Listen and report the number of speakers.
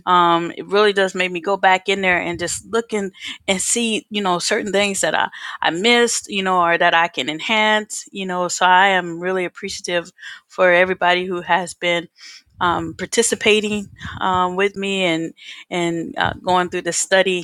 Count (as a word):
one